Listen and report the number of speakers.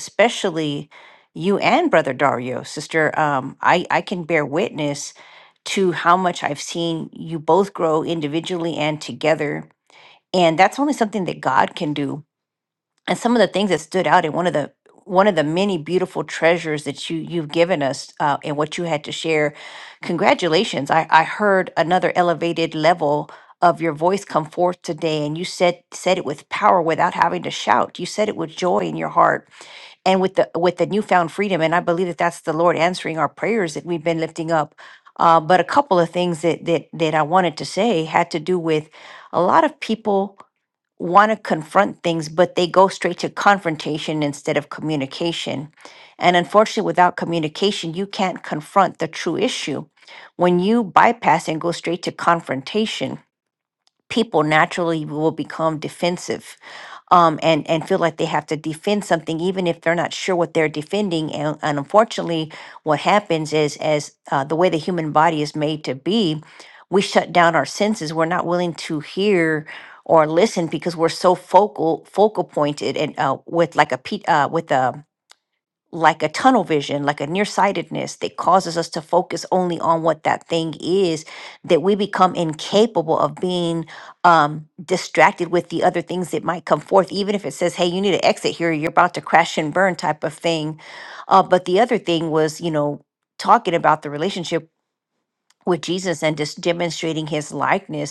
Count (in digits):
1